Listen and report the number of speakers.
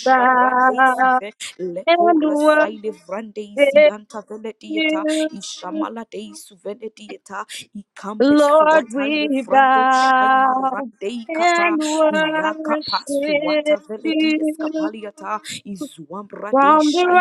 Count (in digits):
2